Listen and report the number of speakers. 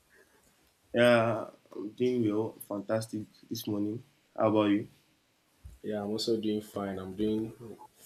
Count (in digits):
2